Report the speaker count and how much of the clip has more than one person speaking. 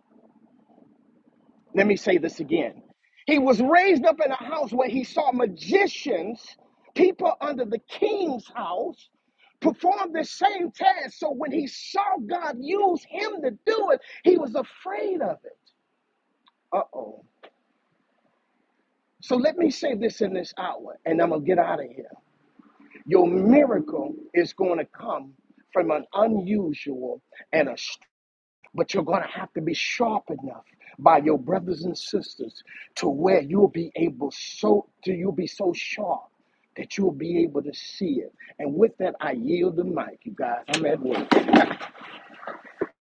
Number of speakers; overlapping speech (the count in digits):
1, no overlap